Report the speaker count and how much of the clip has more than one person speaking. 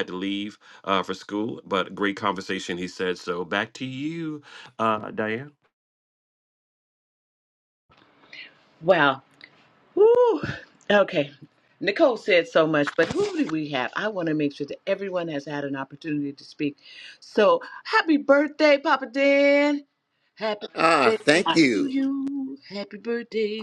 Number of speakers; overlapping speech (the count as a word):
three, about 2%